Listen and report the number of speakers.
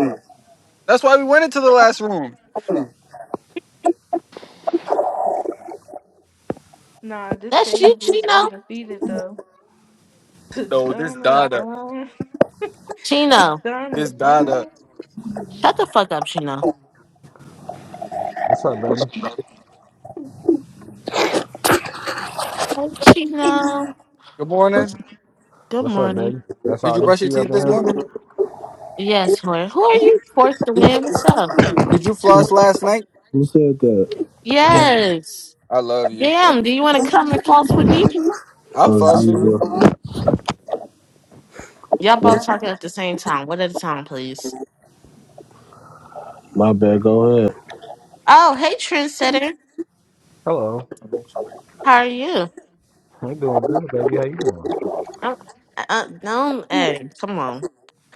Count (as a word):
five